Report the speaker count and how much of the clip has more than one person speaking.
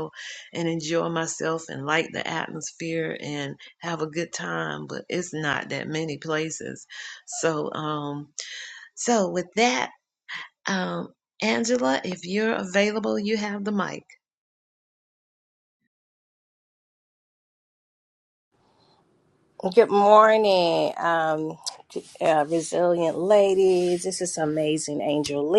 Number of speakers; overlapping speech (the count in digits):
2, no overlap